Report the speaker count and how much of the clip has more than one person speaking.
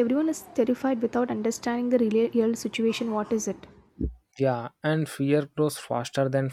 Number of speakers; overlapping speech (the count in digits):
2, no overlap